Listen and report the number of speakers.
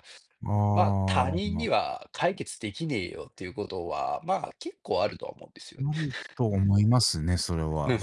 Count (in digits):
2